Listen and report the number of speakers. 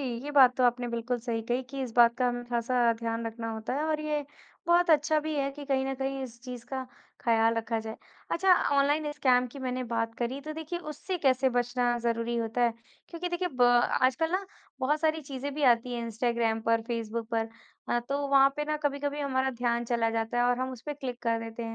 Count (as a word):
one